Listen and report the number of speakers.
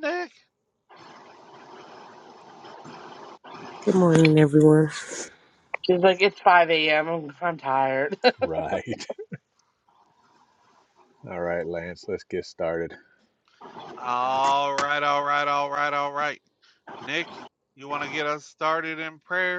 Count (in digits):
4